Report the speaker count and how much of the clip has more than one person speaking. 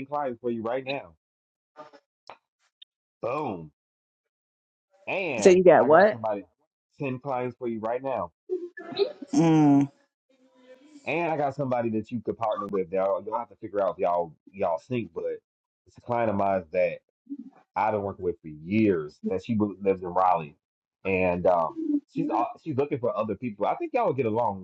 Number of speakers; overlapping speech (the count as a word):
two, about 3%